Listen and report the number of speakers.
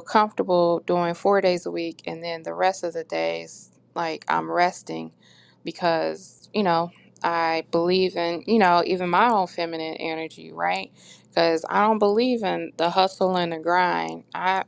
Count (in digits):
1